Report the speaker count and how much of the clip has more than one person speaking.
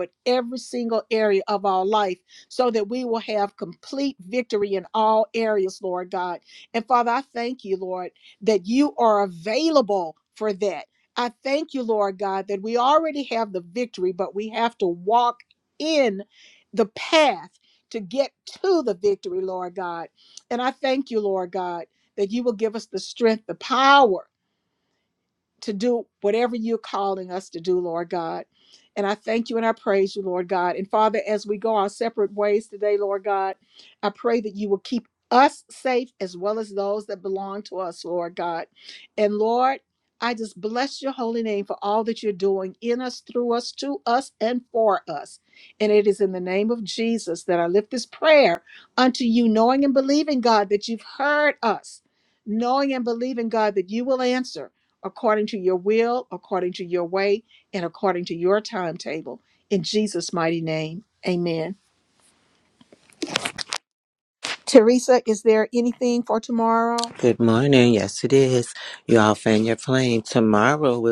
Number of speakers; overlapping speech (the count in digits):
2, no overlap